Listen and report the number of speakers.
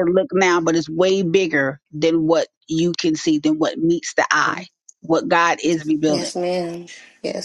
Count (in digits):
2